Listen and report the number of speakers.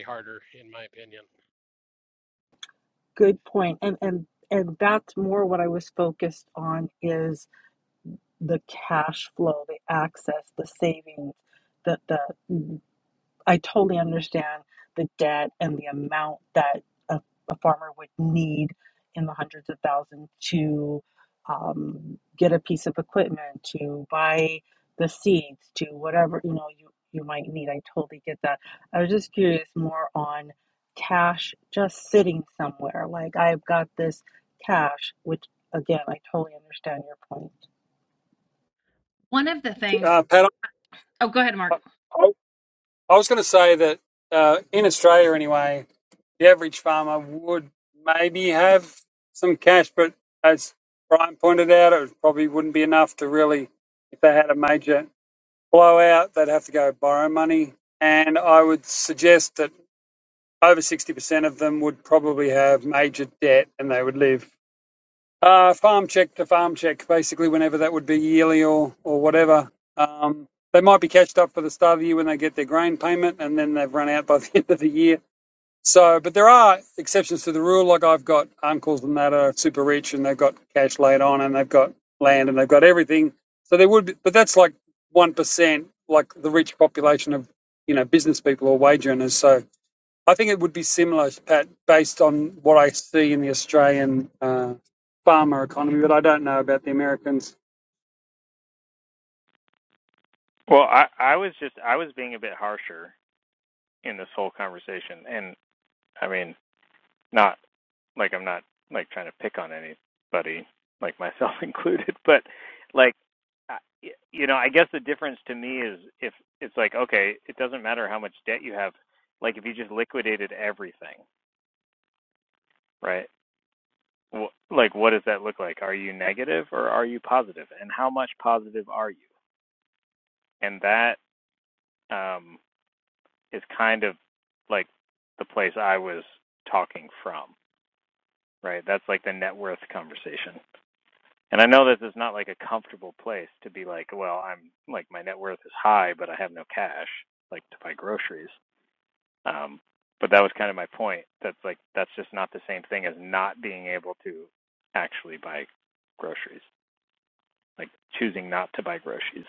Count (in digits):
5